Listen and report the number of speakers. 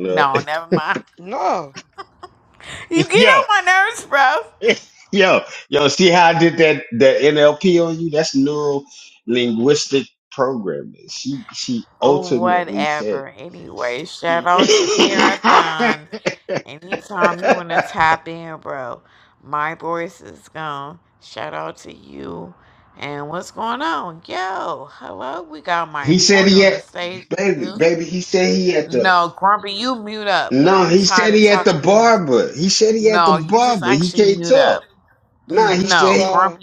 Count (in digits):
3